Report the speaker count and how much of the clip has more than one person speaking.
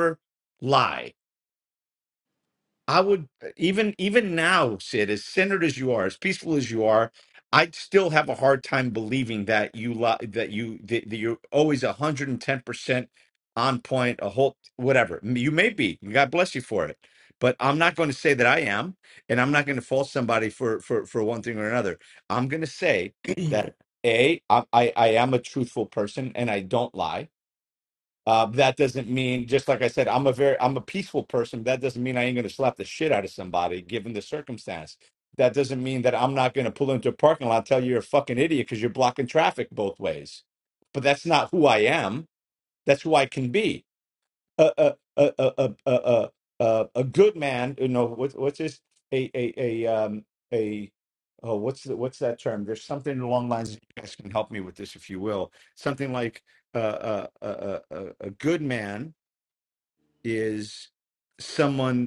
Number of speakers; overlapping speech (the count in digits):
1, no overlap